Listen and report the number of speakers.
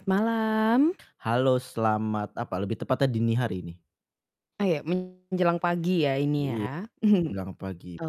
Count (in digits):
2